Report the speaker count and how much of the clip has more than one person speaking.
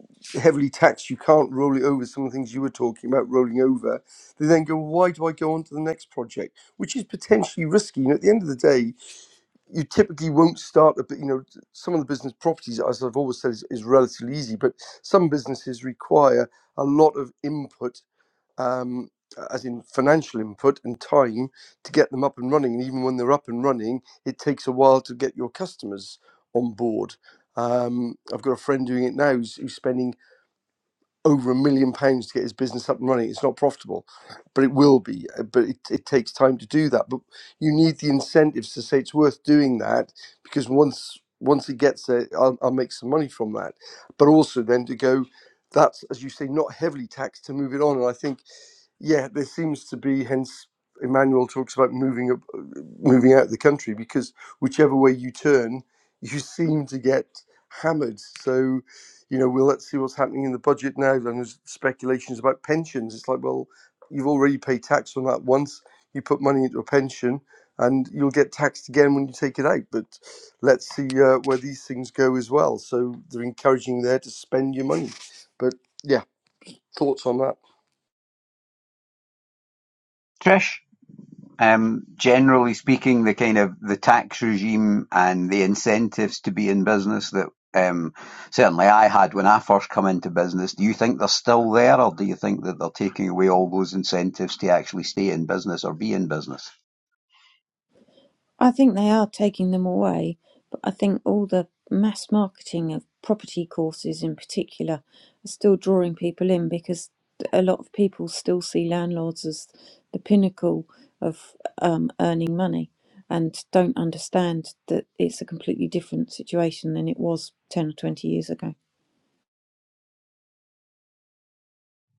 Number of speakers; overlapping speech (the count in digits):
3, no overlap